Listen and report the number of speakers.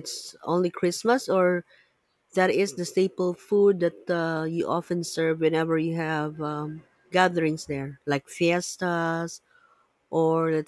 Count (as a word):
one